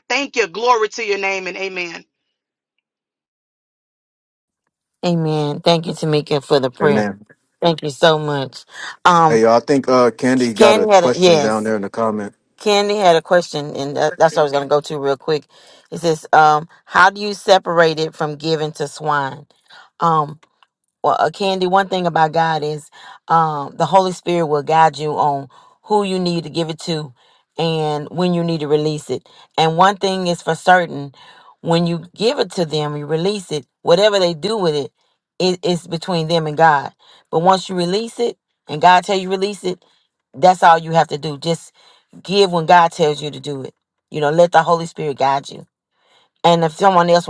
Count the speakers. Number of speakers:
3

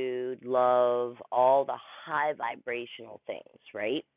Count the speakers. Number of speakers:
1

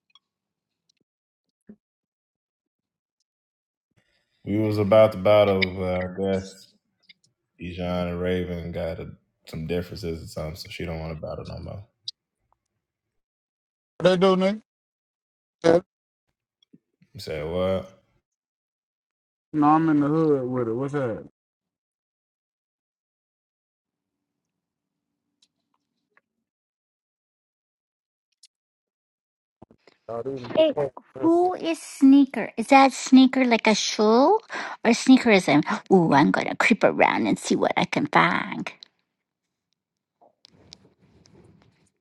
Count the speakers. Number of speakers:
3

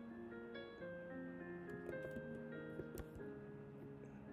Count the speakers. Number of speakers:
0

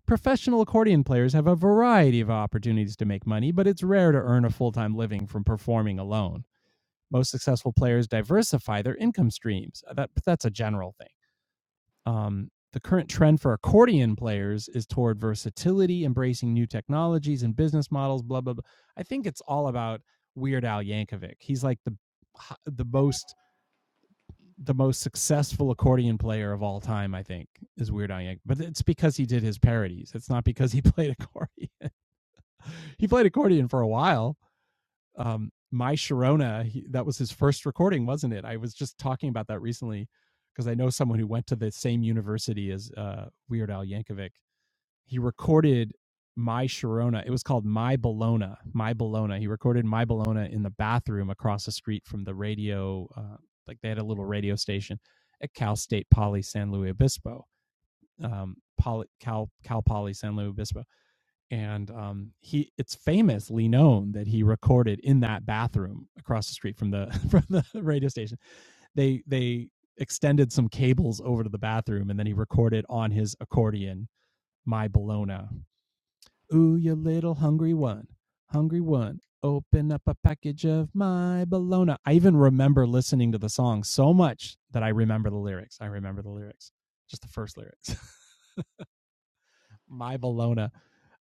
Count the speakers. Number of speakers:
1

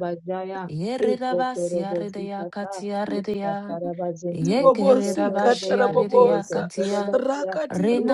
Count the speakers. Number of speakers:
3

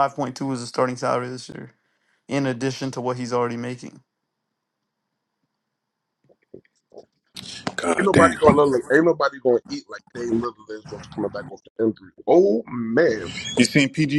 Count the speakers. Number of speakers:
3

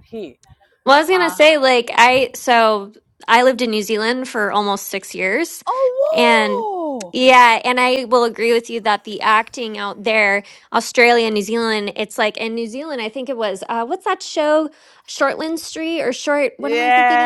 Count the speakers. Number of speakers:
2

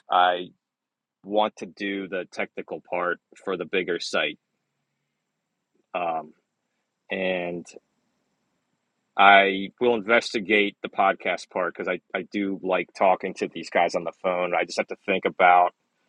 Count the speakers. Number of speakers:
1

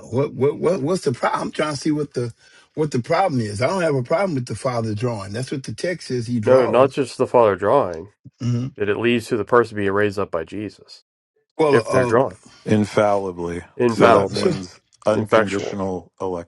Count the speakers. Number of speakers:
3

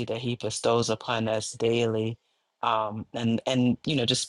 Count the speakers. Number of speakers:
1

